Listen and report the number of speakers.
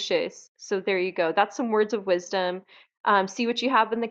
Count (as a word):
one